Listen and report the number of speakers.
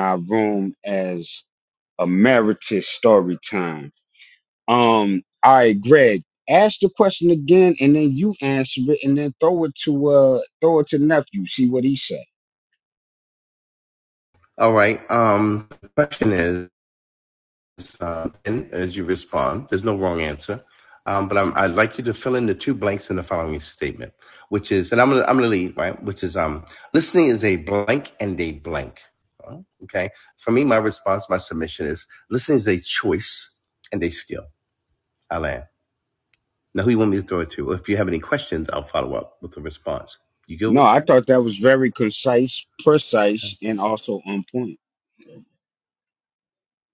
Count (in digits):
2